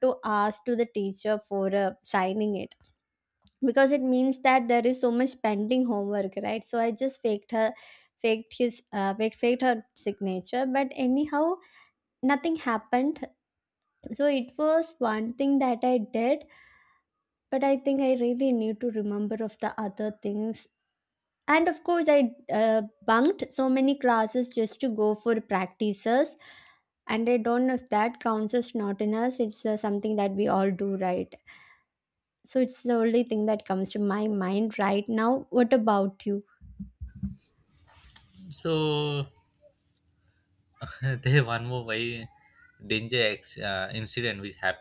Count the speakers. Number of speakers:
two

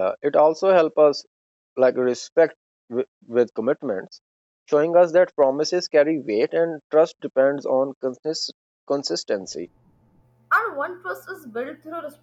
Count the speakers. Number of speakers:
two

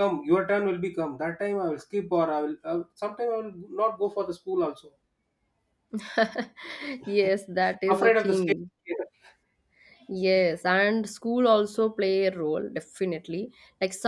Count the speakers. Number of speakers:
two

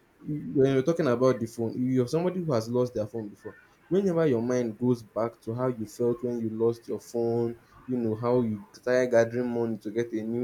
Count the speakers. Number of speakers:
one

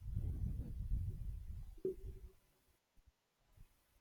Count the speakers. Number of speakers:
zero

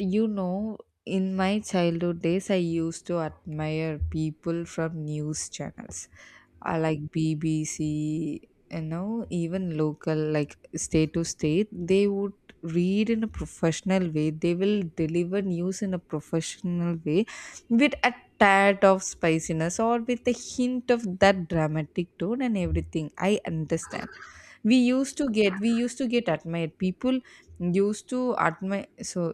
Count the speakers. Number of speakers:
one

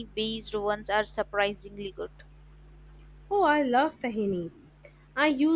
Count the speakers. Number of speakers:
two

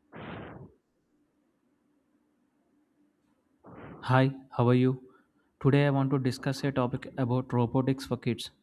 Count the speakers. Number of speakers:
one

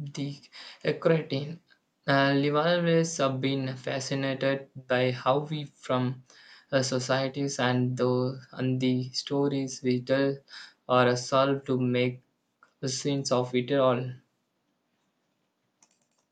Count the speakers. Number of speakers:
one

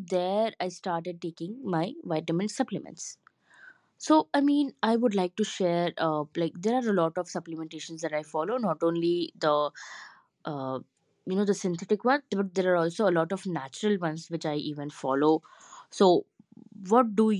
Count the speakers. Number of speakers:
one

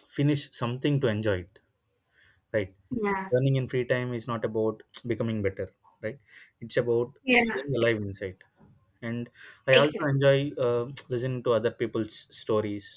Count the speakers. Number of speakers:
two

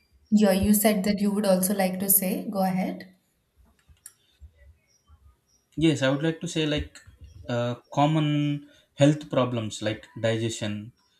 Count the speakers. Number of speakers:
two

